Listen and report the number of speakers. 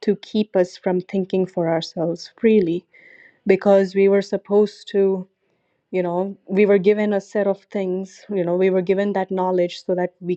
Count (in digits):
1